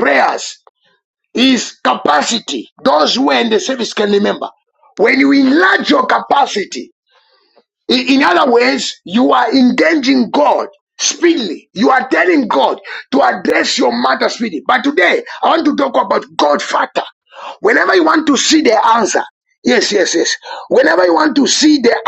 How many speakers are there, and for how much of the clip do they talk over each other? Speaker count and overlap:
1, no overlap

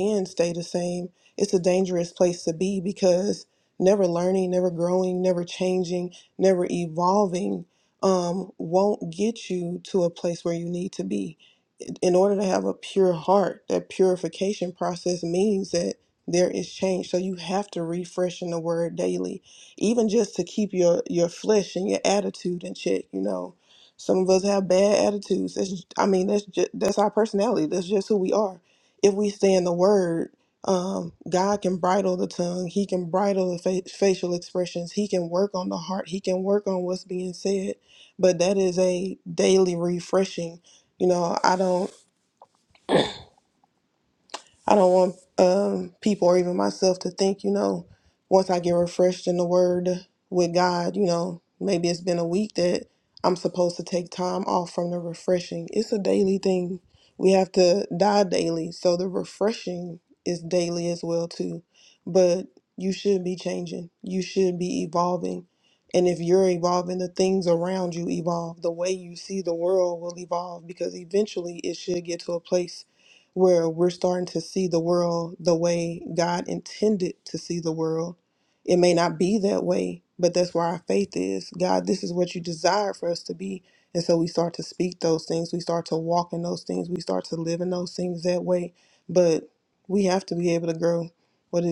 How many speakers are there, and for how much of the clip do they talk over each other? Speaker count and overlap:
1, no overlap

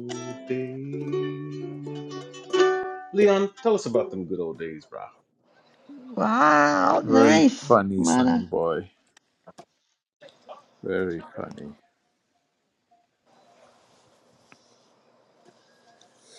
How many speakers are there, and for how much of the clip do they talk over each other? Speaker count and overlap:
3, about 9%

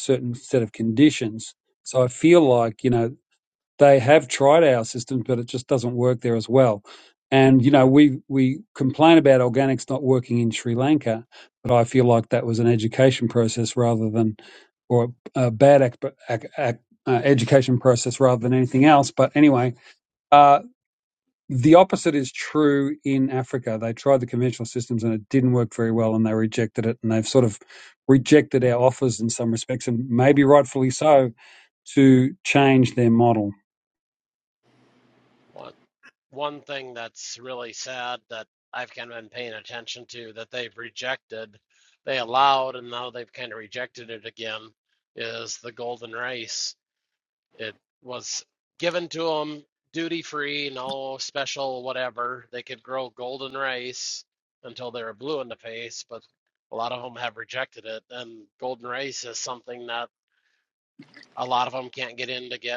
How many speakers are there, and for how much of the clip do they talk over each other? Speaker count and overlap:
2, no overlap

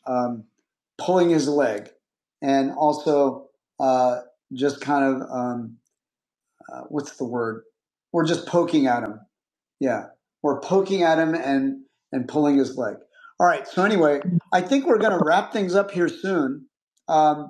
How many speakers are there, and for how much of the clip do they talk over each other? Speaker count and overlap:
1, no overlap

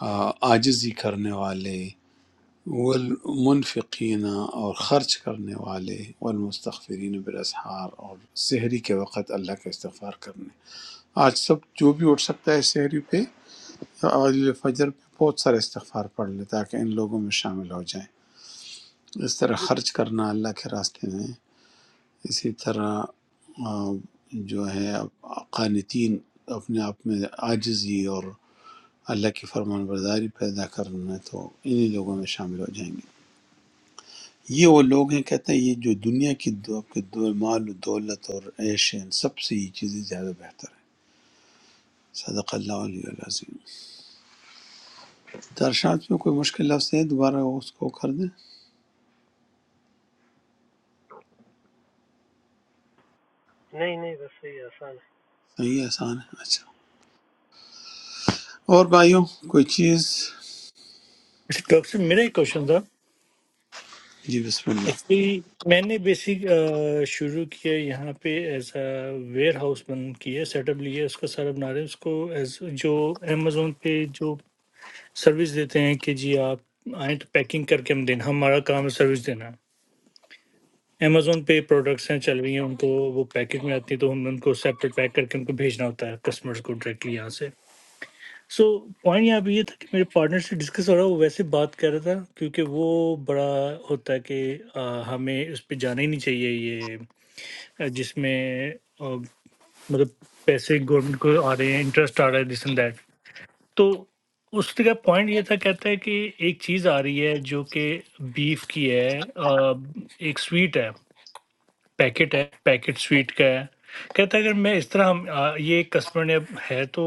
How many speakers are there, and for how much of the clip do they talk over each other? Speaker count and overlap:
3, under 1%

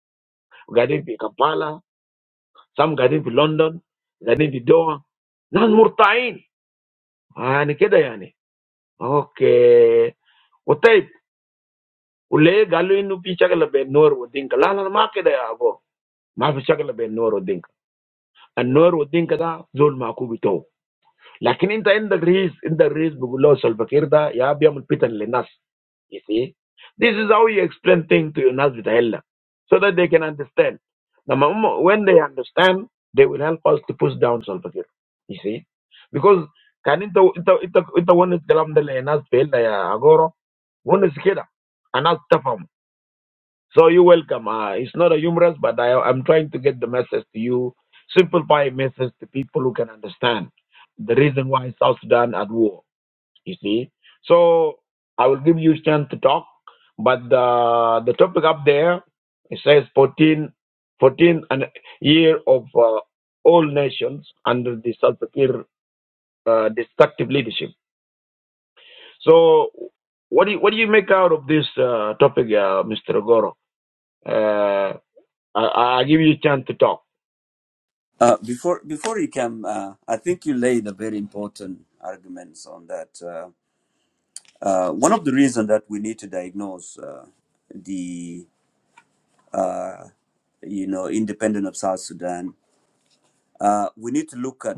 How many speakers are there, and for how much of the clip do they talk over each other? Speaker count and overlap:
2, no overlap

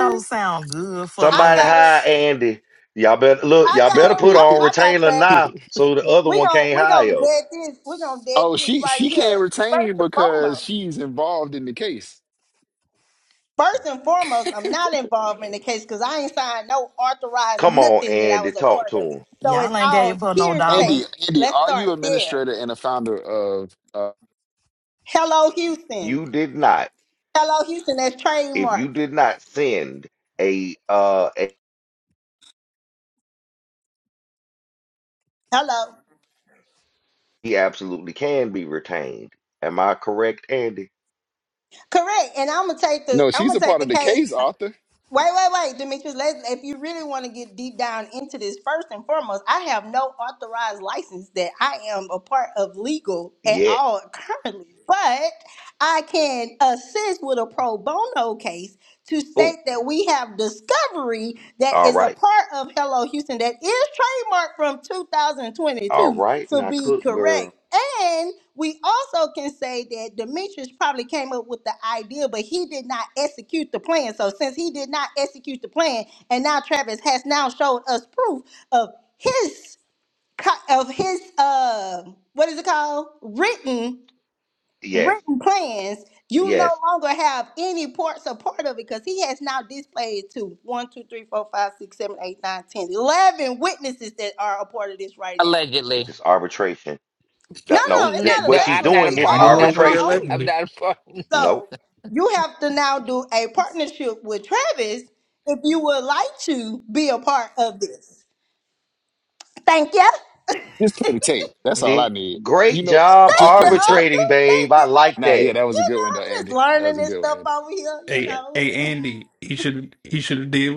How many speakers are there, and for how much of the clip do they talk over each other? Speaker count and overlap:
6, about 19%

